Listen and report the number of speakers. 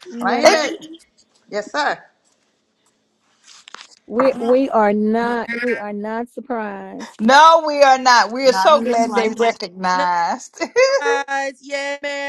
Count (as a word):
four